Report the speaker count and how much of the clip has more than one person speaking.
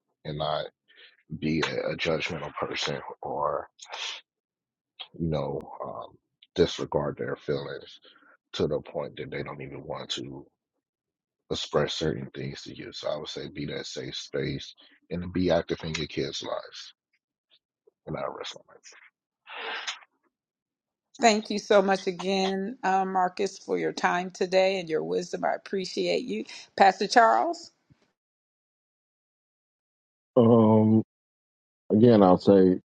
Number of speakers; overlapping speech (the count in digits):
3, no overlap